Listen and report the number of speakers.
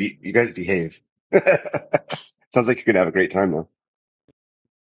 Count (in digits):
1